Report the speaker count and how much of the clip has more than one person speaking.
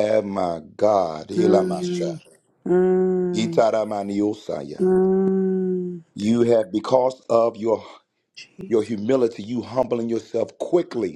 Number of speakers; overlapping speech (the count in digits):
2, about 10%